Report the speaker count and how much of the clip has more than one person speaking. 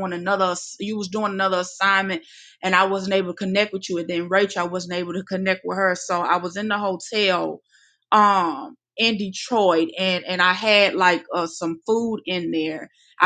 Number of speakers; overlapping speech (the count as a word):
one, no overlap